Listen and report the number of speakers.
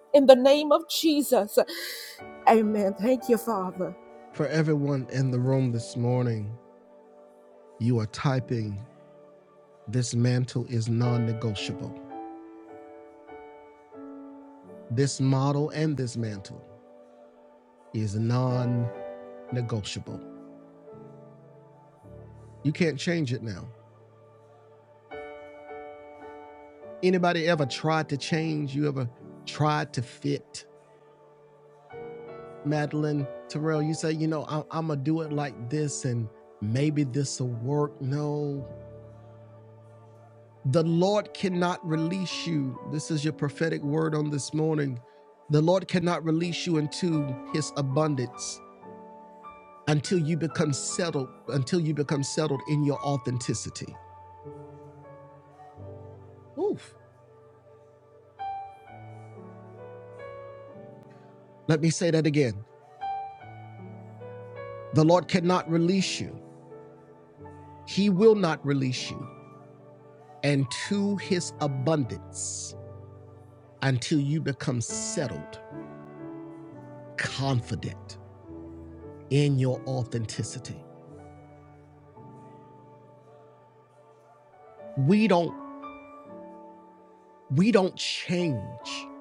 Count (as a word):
two